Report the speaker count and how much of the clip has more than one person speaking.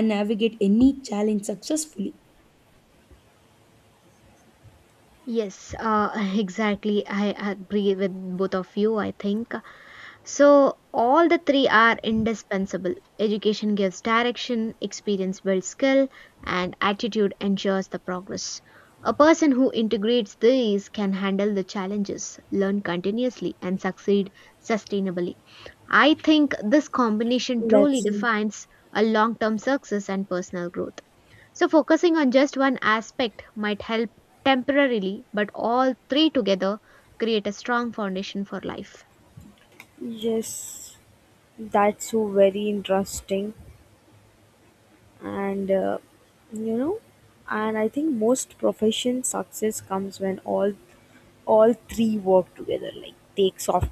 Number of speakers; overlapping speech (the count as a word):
three, about 1%